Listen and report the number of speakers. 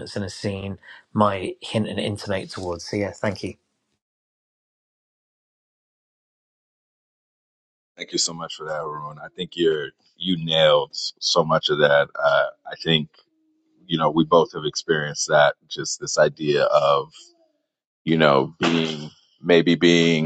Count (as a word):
two